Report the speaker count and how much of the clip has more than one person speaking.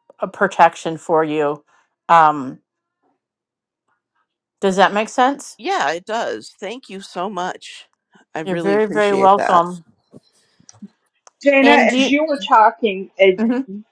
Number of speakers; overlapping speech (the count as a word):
three, about 12%